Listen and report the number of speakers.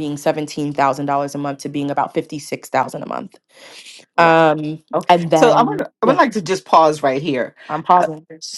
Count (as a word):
two